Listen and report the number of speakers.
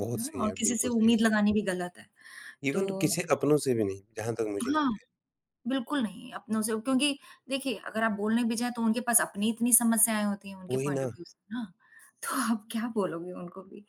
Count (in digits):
2